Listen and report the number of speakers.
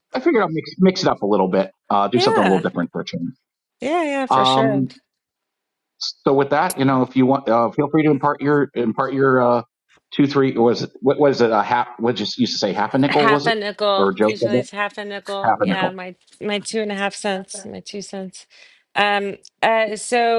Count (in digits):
2